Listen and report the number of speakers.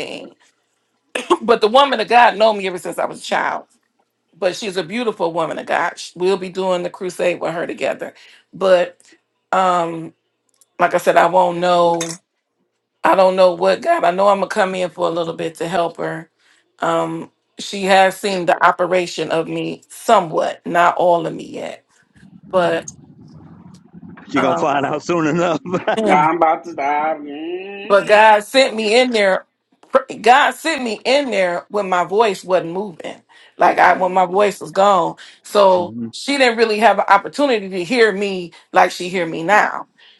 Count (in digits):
3